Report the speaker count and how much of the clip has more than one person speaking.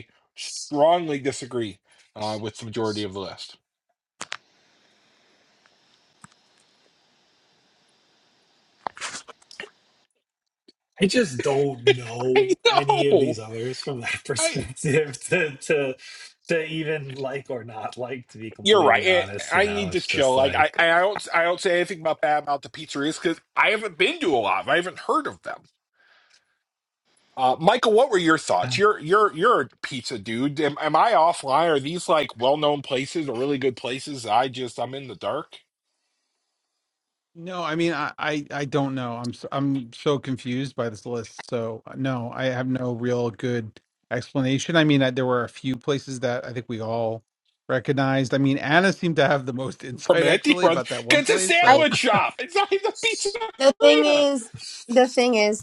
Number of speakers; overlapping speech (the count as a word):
four, about 10%